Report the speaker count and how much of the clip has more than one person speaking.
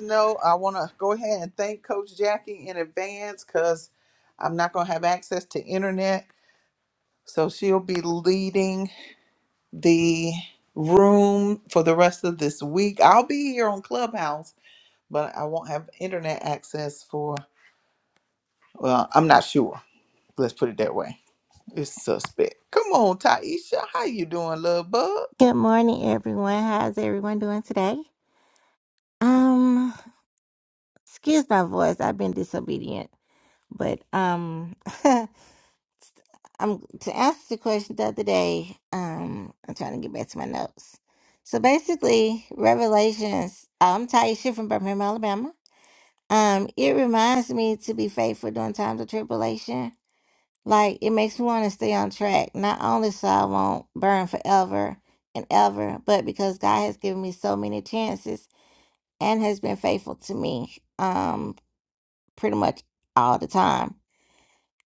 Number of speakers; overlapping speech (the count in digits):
2, no overlap